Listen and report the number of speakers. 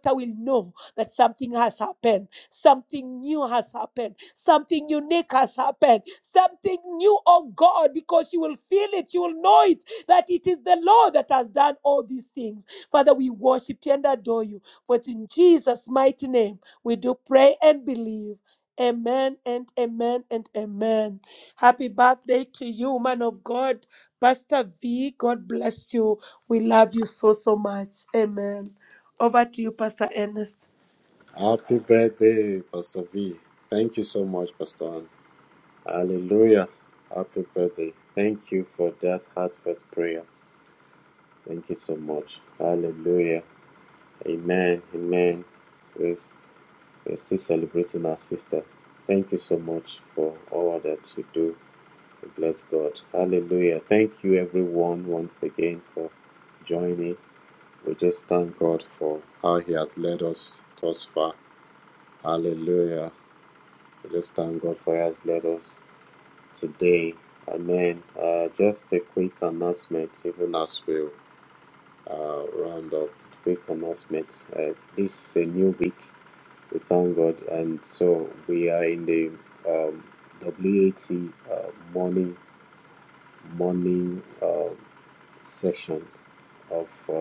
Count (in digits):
2